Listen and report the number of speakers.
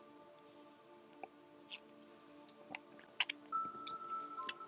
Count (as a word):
zero